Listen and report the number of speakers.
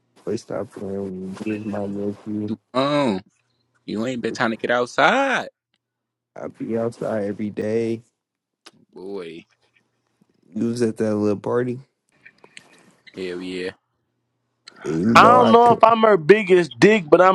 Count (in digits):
3